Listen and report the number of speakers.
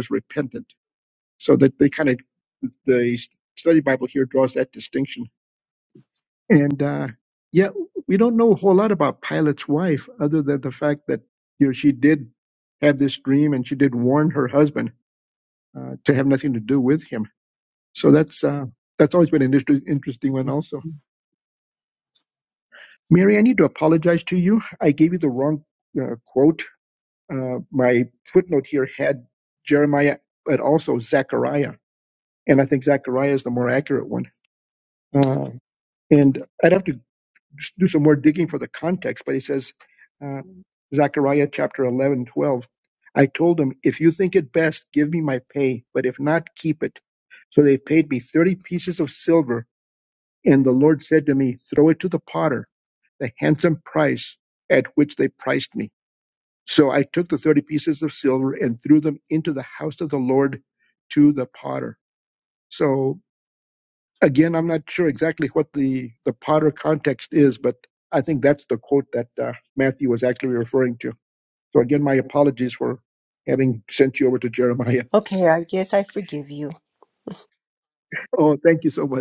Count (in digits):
2